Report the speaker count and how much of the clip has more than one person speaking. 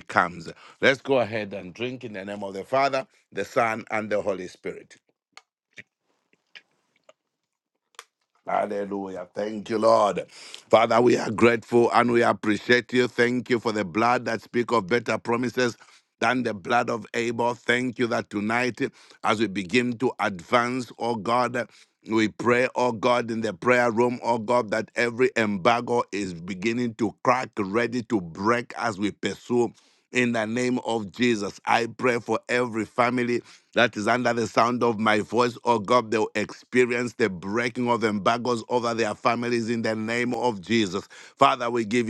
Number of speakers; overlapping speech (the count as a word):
one, no overlap